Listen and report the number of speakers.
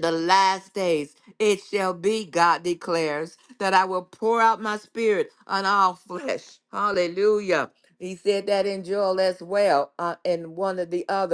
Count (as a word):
one